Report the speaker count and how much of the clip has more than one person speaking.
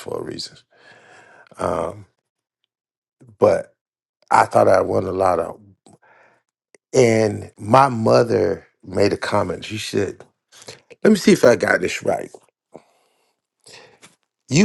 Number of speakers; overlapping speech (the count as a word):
one, no overlap